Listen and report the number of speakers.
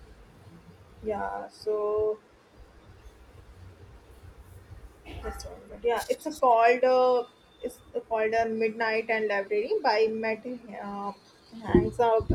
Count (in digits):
1